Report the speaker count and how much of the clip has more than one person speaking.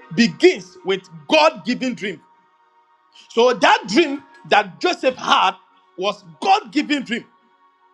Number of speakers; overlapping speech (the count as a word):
one, no overlap